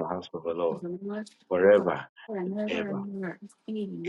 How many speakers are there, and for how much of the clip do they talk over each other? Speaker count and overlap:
two, about 16%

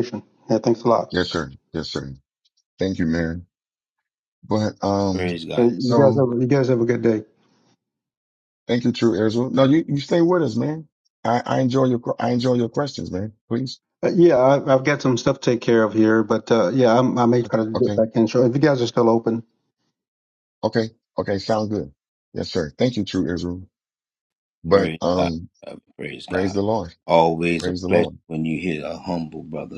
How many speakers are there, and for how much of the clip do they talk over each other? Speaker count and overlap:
three, about 8%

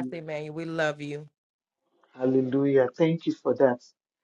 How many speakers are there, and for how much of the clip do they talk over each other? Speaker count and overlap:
two, about 4%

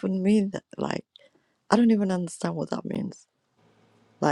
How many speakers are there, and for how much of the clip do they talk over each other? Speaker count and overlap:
one, no overlap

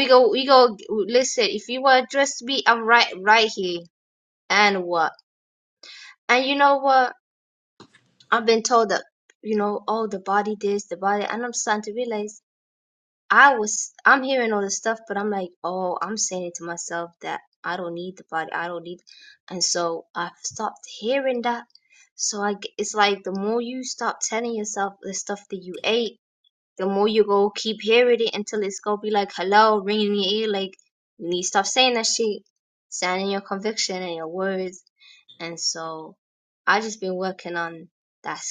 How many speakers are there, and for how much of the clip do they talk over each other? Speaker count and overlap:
one, no overlap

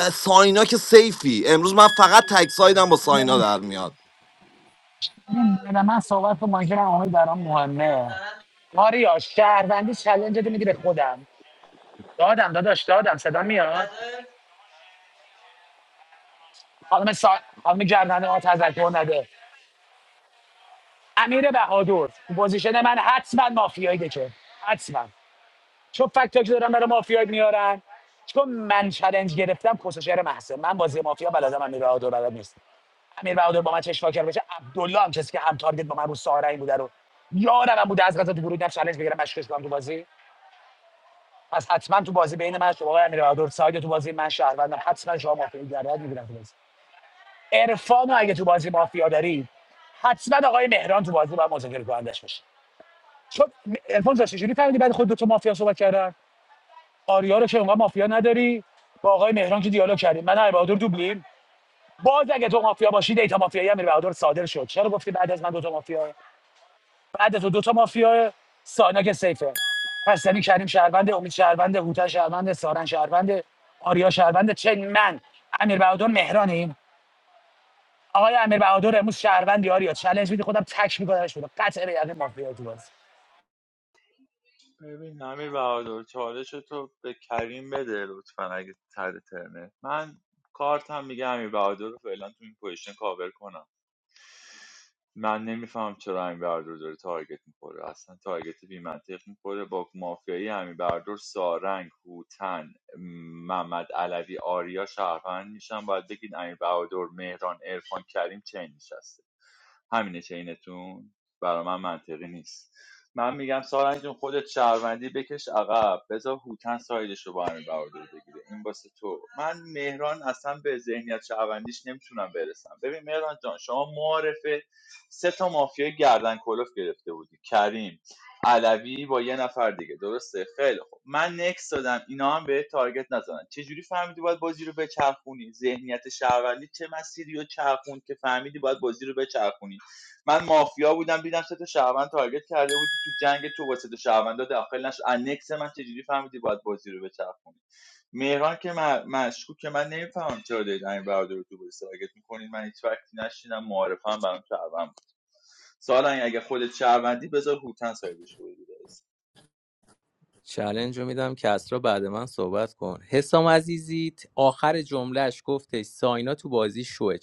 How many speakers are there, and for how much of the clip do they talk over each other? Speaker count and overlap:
four, no overlap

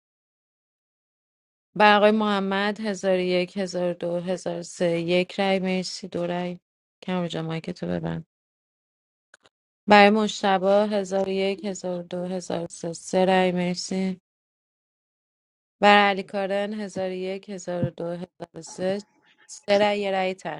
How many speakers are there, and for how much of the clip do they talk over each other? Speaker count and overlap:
one, no overlap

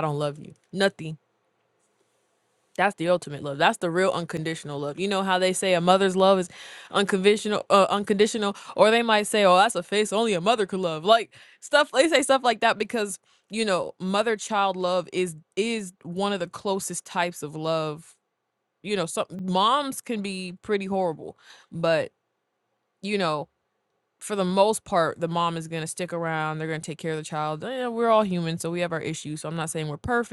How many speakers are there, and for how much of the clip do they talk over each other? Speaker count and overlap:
one, no overlap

